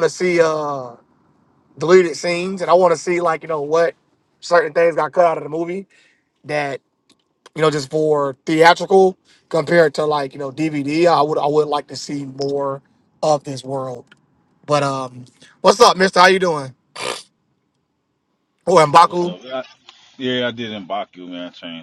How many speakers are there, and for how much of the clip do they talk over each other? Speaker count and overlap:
two, about 1%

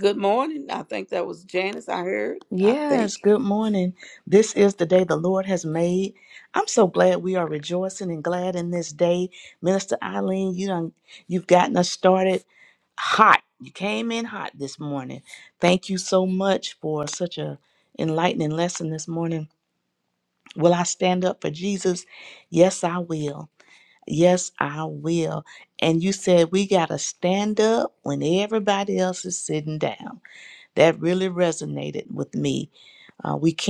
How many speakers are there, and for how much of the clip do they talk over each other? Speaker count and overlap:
two, about 2%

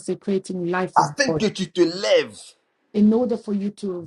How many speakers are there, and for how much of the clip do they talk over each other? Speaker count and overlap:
two, about 12%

